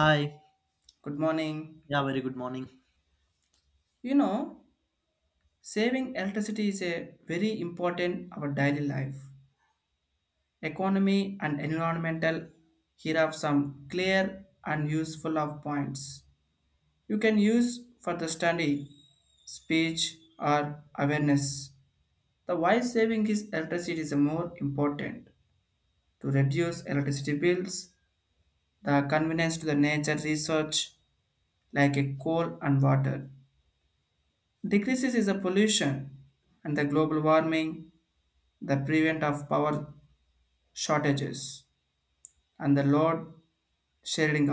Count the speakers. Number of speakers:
two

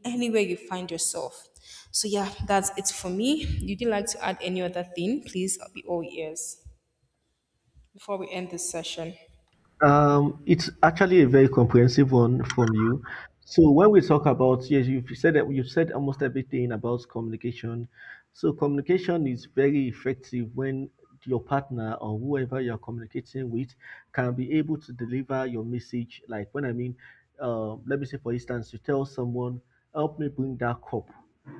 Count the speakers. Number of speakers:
two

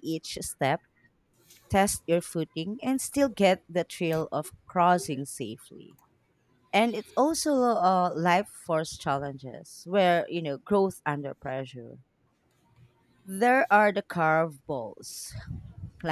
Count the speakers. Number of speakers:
one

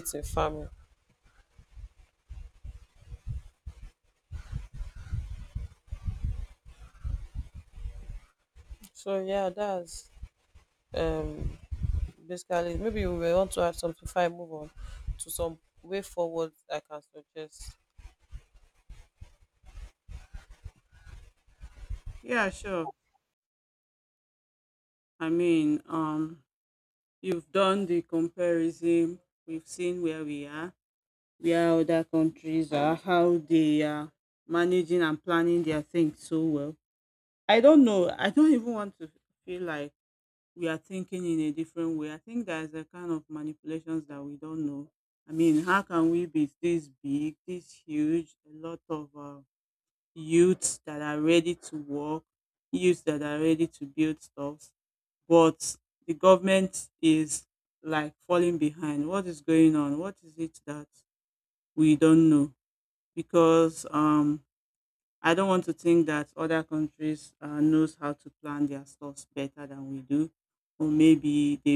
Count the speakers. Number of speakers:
two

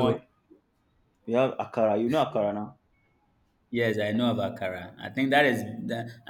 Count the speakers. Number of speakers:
two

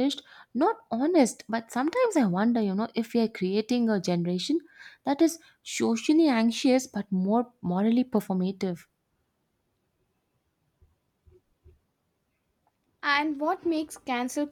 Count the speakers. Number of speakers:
two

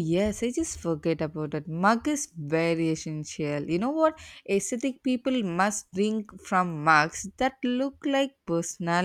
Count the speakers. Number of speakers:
one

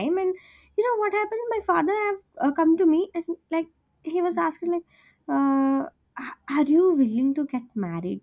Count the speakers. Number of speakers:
one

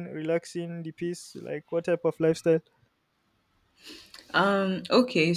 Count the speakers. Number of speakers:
two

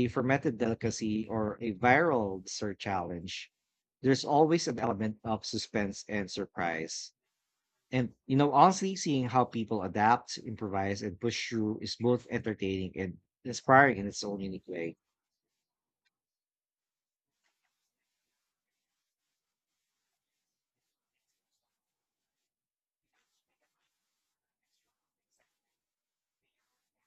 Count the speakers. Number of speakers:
one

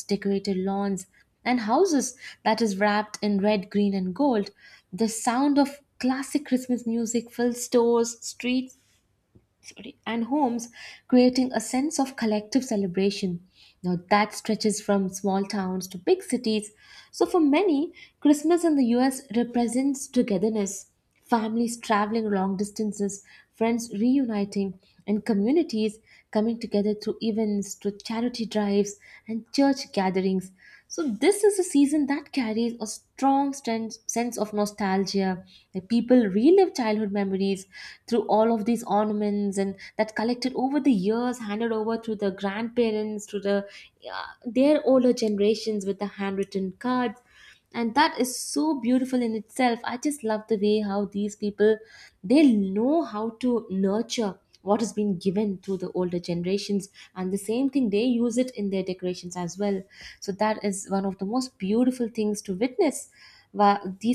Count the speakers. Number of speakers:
one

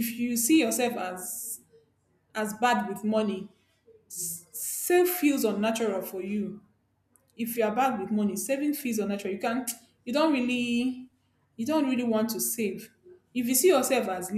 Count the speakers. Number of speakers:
one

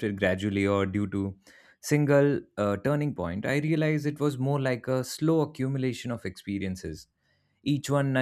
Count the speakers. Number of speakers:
one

